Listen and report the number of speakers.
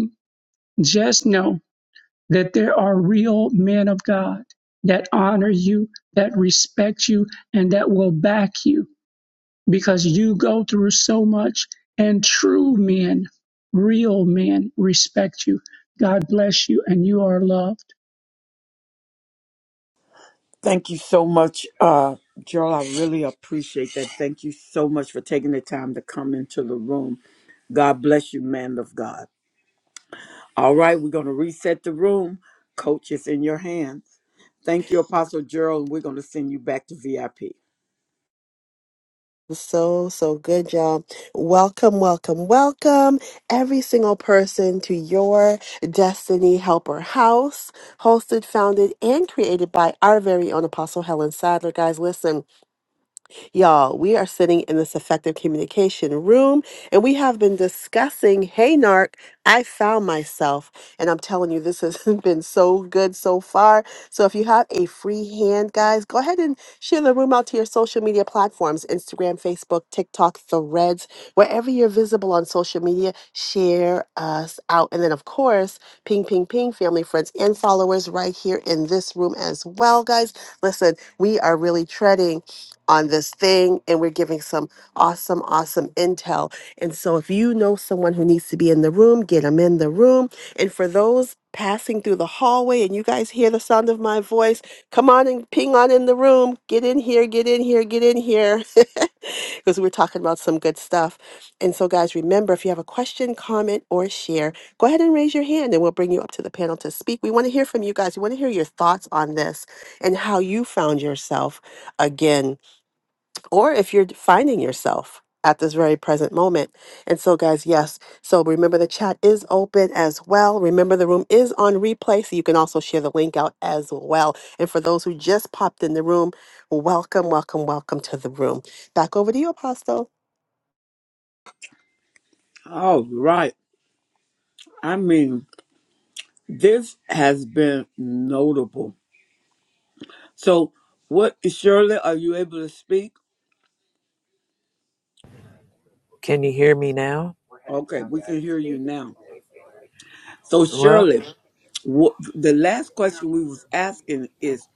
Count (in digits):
4